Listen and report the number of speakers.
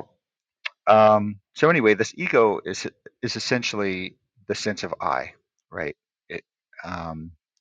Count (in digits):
1